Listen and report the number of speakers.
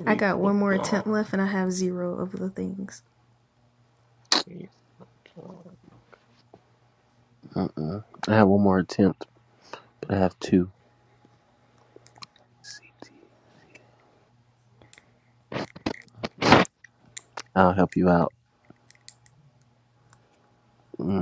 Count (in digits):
3